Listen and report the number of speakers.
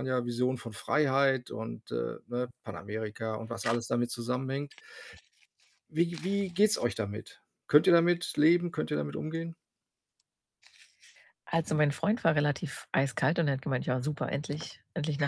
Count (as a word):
two